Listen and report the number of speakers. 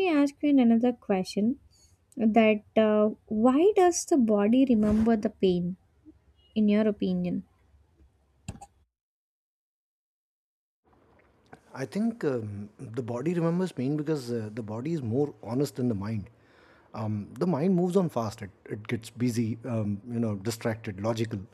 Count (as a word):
two